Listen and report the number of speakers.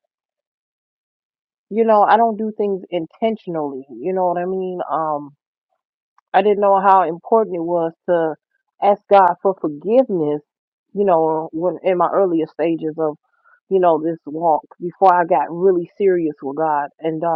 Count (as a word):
one